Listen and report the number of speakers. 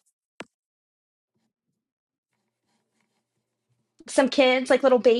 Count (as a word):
one